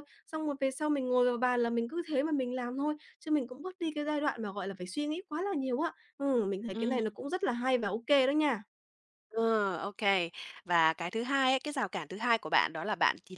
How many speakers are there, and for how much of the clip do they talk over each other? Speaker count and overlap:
2, about 2%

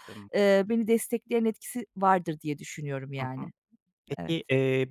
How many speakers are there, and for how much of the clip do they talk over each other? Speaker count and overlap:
2, about 15%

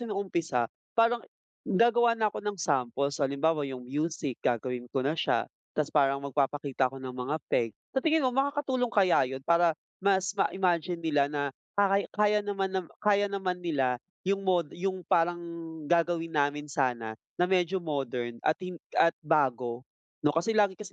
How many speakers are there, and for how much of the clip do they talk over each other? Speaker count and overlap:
1, no overlap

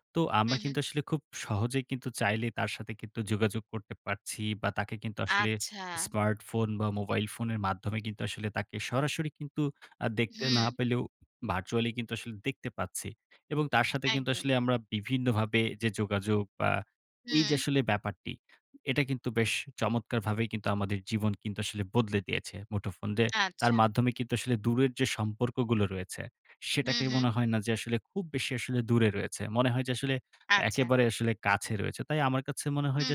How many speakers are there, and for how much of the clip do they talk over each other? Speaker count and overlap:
2, about 9%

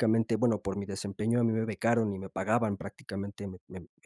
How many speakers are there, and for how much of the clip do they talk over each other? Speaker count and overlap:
1, no overlap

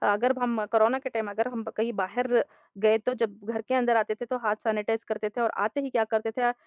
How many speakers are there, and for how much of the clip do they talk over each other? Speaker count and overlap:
1, no overlap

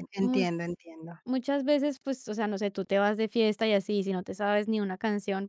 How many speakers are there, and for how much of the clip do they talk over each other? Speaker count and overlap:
2, about 5%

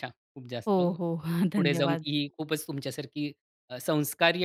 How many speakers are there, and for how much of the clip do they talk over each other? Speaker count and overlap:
2, about 15%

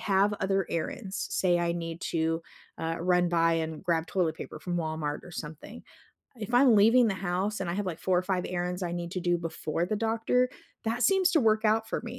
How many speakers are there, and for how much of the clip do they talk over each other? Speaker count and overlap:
1, no overlap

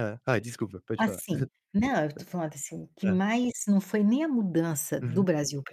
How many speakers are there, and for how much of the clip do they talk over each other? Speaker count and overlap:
2, about 10%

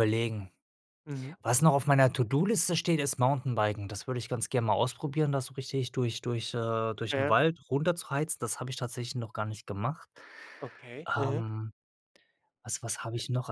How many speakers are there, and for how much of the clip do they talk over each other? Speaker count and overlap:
2, about 4%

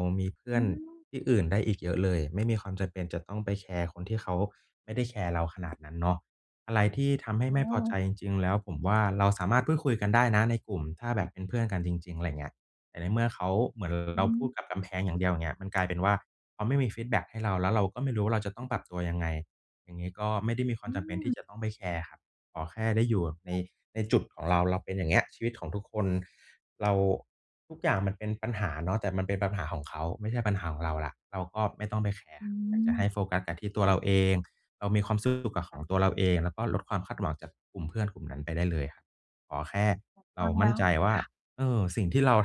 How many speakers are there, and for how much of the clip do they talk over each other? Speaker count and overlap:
2, about 6%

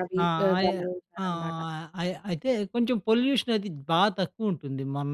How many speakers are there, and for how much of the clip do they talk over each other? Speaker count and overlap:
2, about 20%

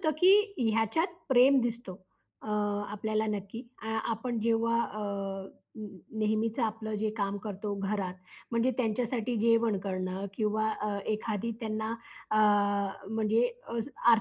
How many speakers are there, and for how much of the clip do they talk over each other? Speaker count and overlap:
1, no overlap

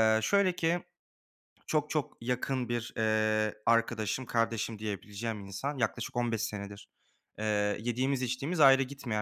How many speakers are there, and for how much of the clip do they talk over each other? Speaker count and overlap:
1, no overlap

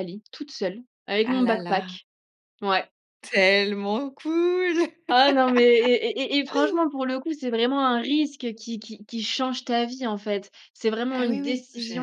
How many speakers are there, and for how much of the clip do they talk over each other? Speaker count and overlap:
2, about 13%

